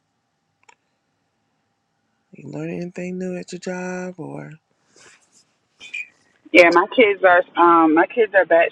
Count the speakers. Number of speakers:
two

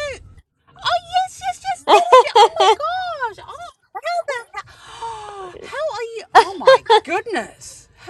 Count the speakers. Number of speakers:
one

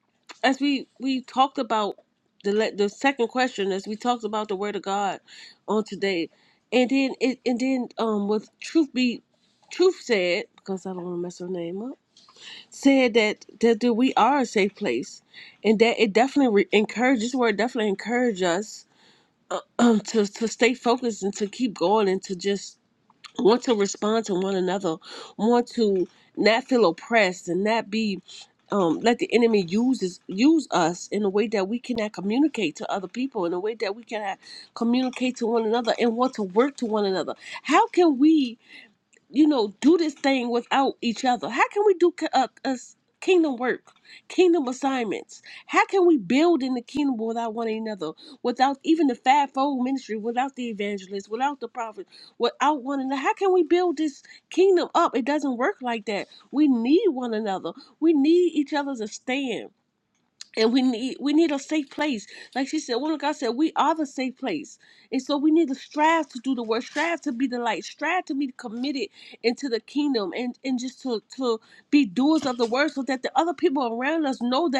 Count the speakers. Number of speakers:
one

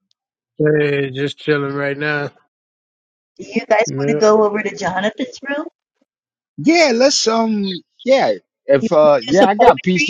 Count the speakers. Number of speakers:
three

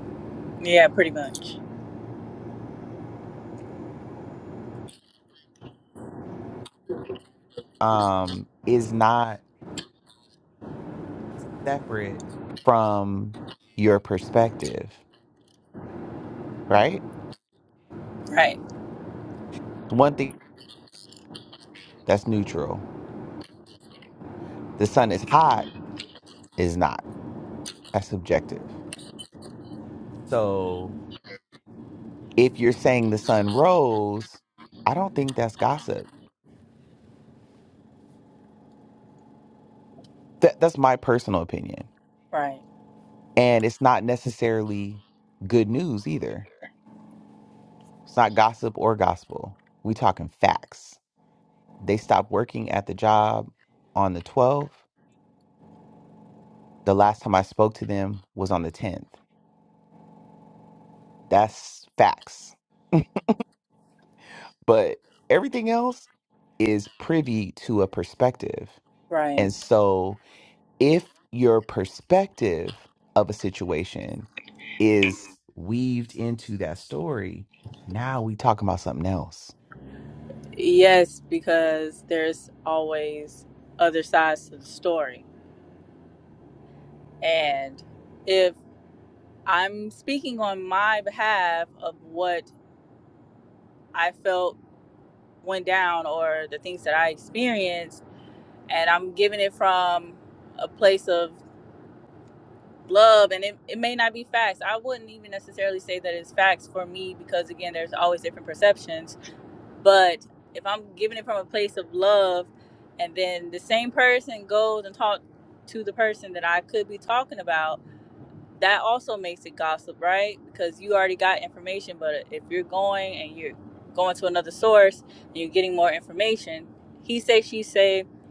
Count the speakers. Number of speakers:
two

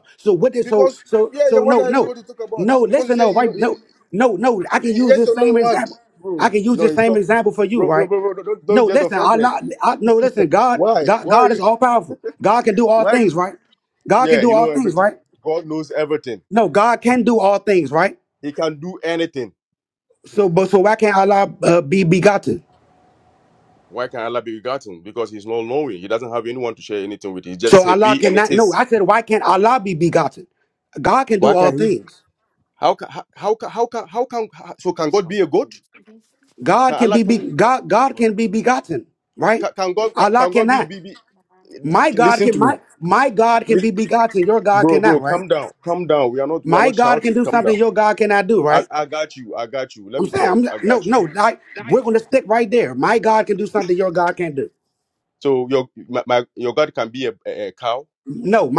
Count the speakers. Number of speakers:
two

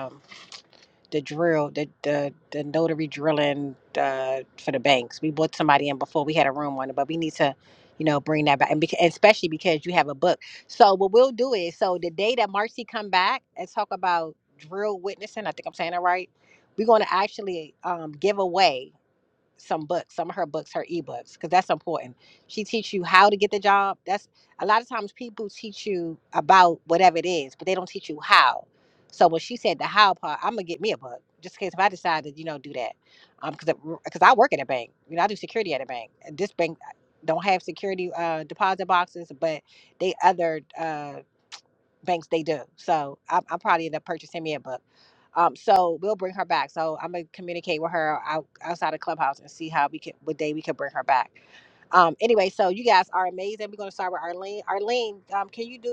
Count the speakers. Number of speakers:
one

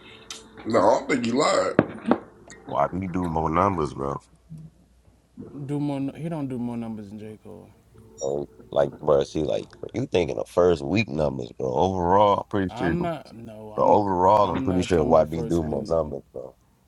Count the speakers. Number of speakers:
three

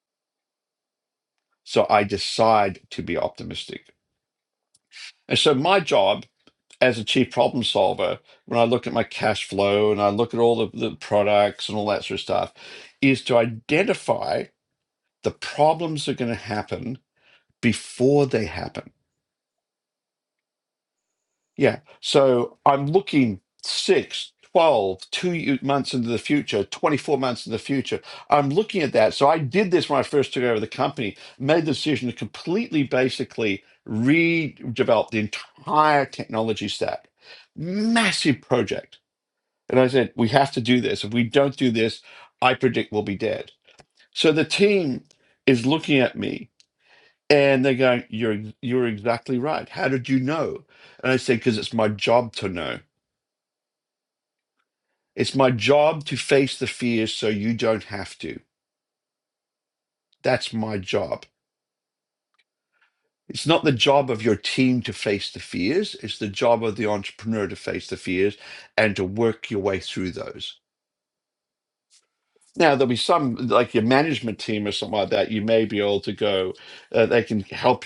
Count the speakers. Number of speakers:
one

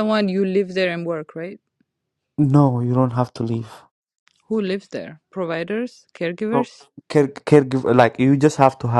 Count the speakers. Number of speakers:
two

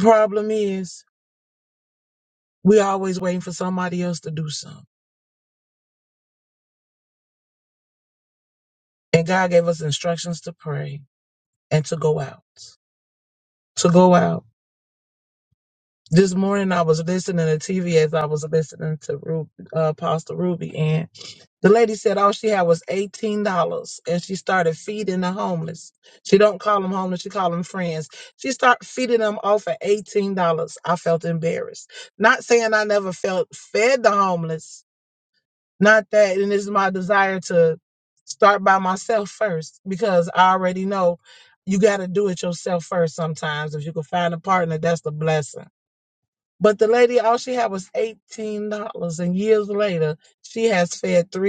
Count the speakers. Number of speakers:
one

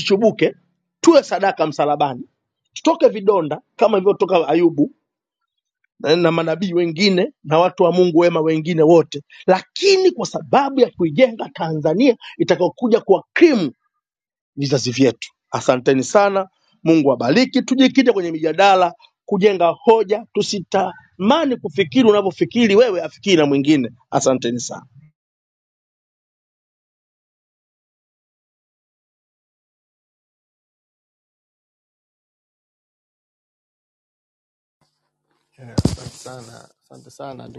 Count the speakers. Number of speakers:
two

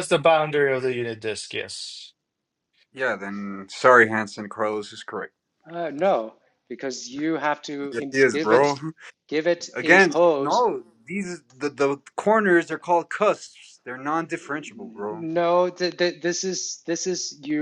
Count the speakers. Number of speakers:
three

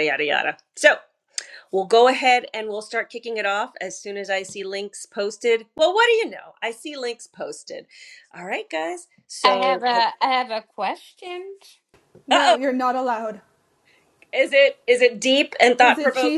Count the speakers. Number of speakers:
three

